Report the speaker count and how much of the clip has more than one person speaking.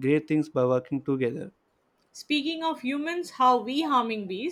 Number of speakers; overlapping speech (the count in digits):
2, no overlap